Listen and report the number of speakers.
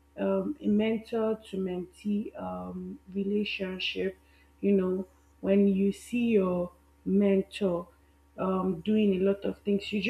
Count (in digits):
1